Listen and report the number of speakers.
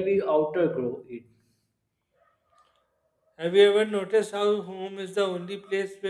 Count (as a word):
two